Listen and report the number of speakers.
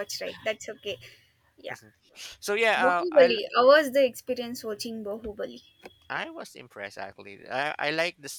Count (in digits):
2